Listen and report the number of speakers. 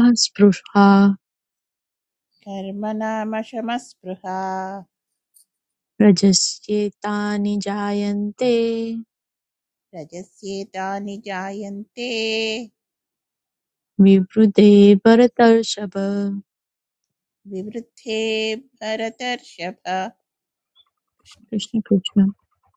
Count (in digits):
2